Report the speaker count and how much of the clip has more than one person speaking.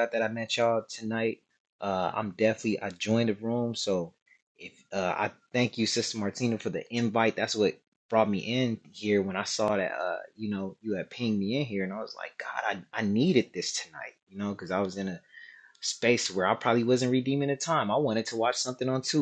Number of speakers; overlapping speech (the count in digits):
1, no overlap